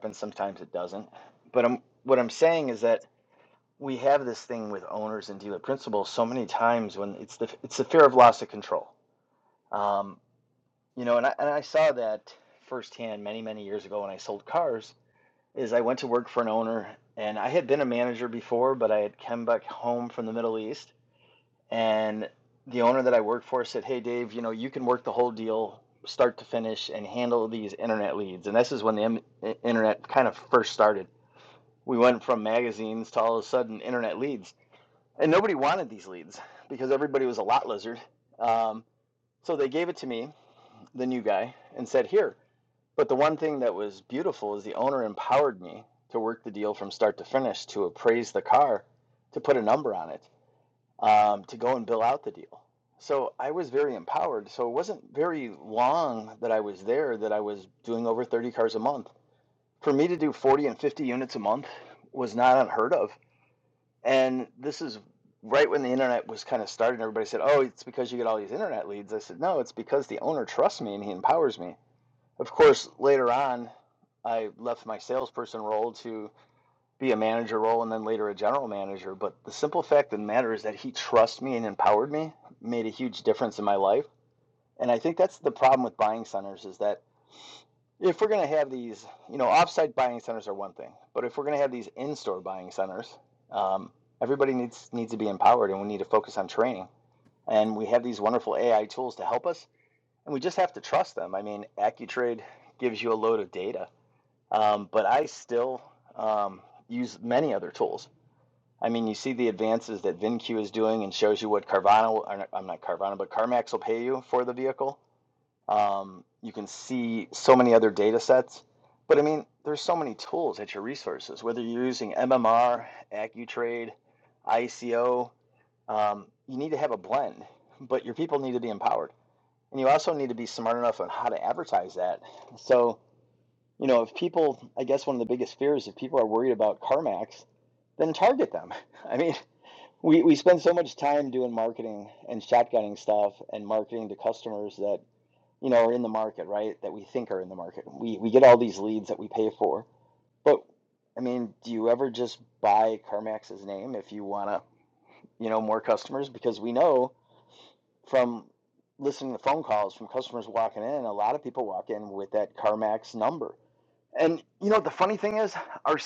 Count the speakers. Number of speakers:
one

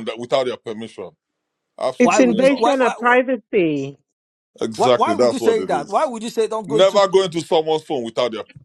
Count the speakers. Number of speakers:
three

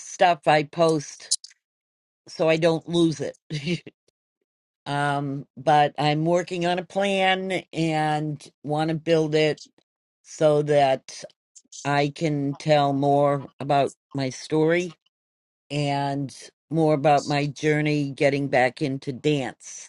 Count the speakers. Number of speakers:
one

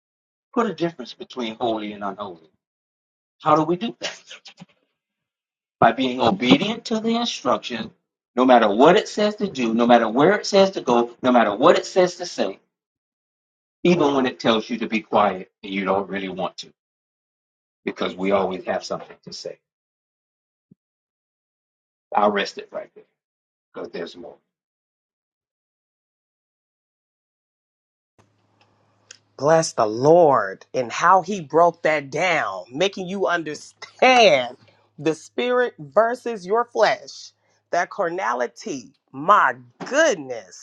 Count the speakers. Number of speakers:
two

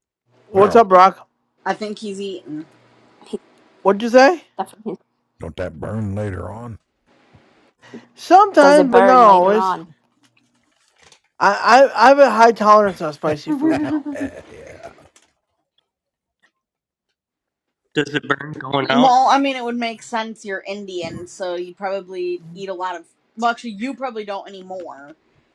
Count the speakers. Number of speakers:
five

